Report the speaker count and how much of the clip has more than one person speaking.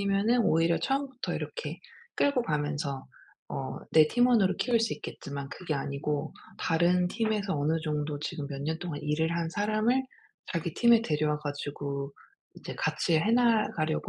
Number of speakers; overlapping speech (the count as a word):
one, no overlap